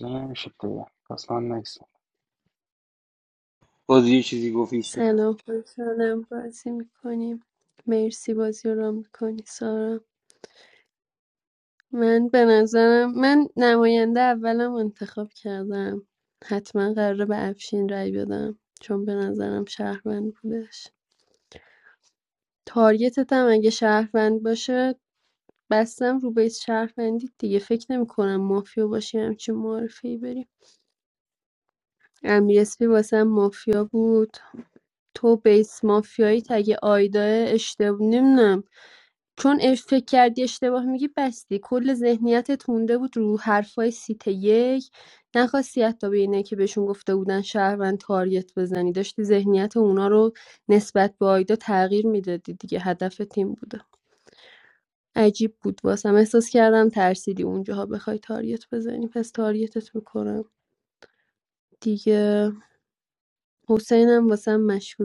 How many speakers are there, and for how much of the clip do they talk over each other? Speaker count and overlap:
3, under 1%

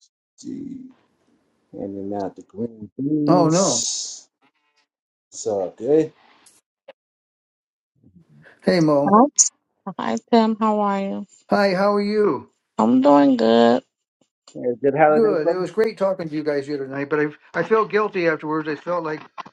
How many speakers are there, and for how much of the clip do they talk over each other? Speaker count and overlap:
3, about 6%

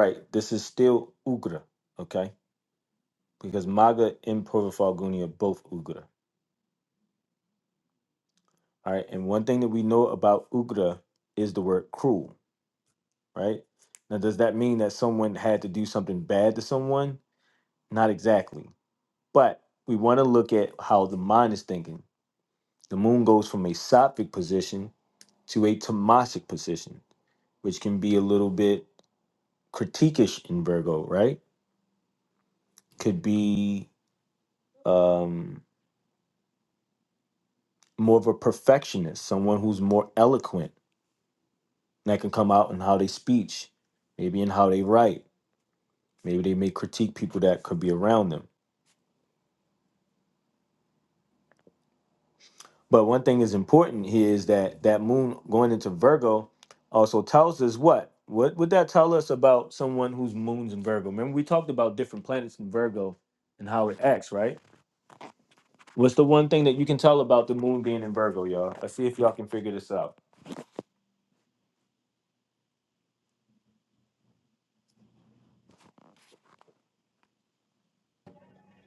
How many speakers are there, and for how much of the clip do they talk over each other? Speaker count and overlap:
1, no overlap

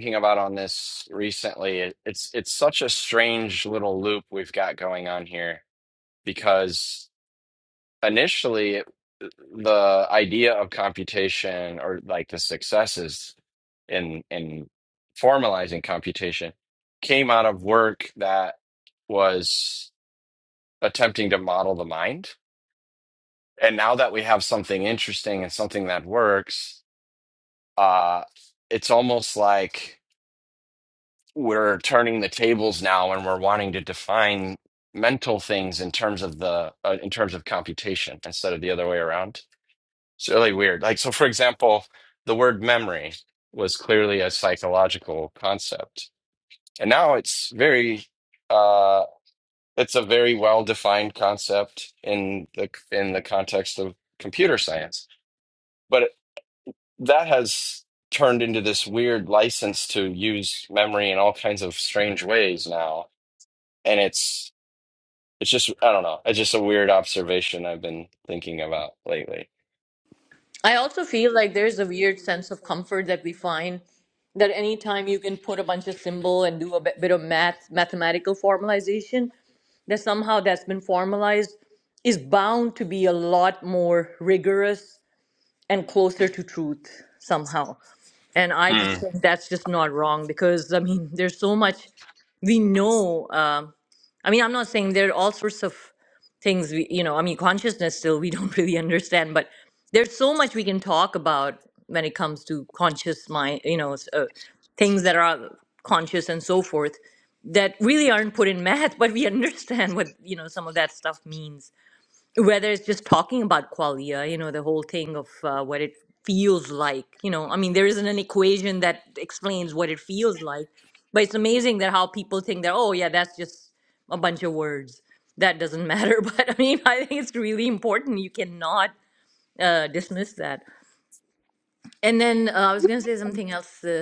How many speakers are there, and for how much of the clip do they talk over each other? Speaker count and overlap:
2, under 1%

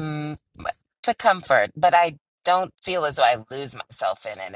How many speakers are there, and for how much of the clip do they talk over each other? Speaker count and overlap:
1, no overlap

